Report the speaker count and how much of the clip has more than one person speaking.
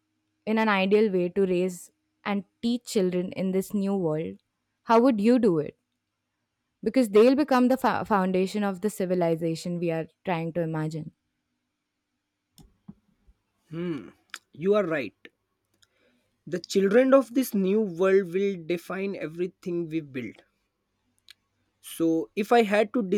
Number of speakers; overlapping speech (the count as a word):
two, no overlap